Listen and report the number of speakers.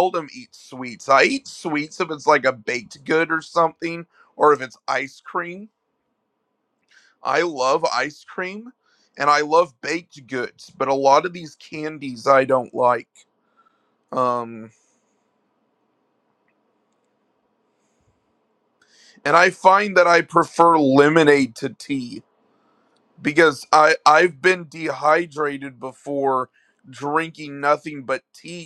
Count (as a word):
one